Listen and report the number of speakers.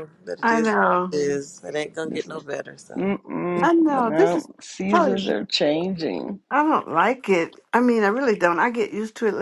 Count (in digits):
3